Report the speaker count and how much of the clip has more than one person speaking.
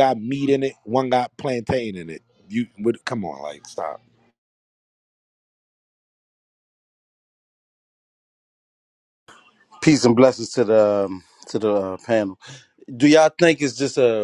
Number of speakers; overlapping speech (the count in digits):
2, no overlap